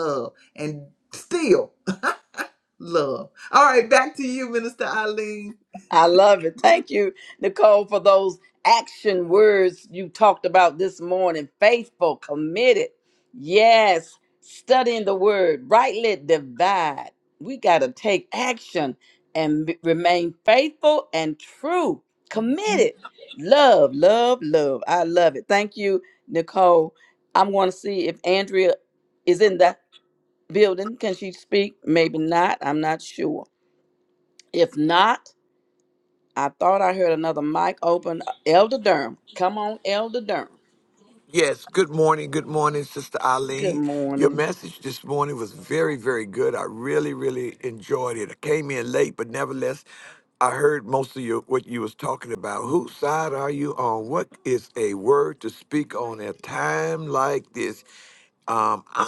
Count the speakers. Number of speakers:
three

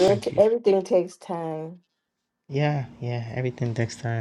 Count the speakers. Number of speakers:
two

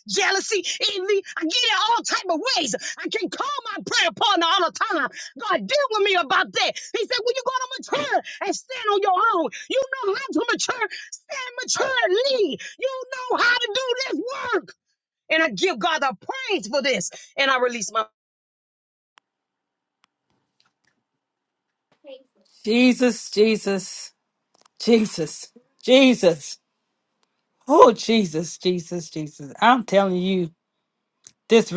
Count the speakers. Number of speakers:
two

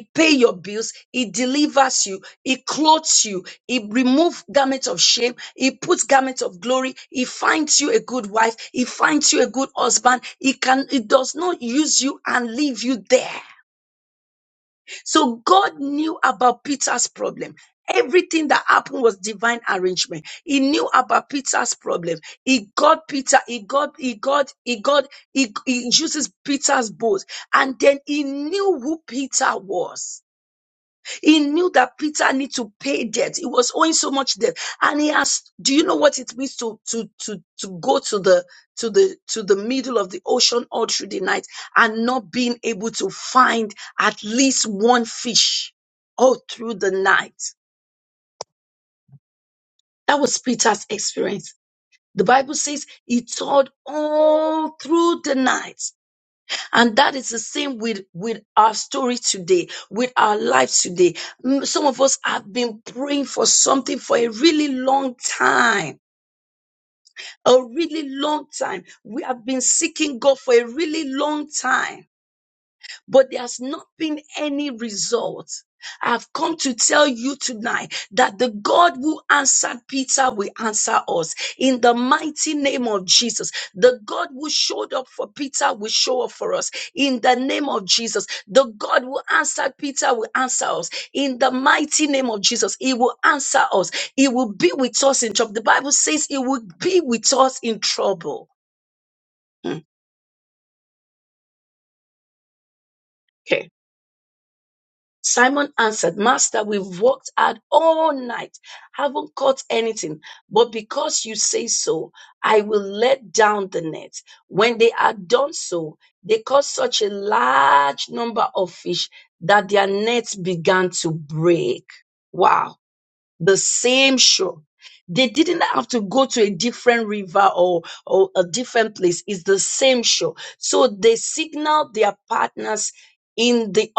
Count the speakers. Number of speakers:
one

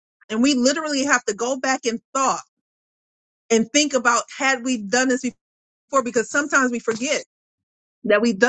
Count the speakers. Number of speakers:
one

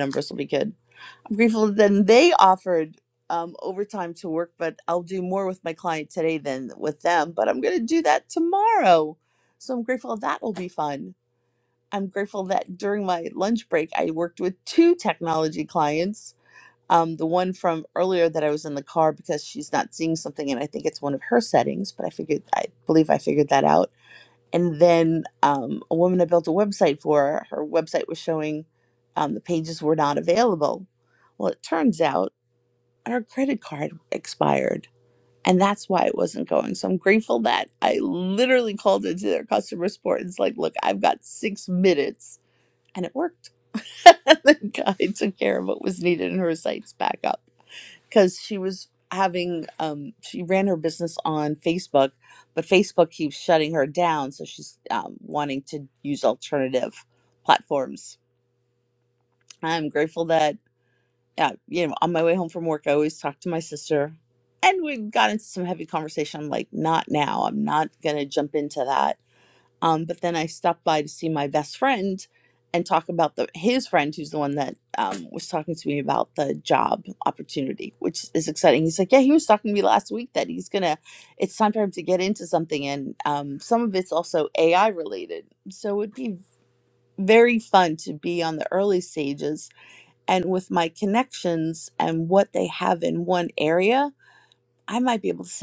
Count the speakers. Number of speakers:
one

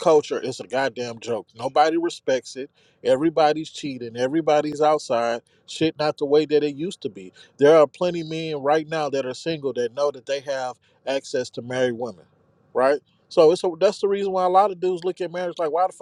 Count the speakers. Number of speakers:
one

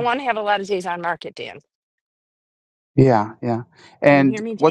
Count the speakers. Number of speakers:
two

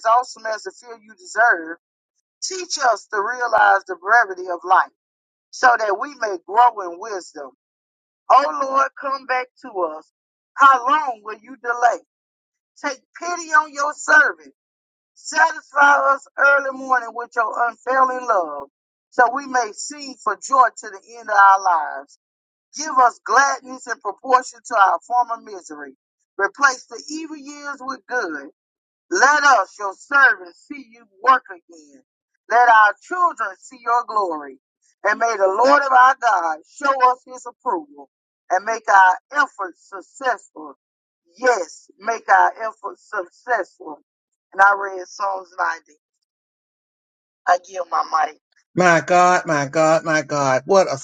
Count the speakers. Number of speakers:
two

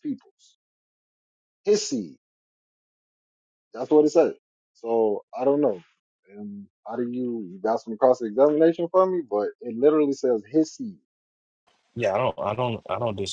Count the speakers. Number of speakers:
two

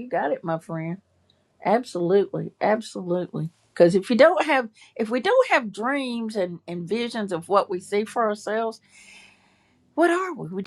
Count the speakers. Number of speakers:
one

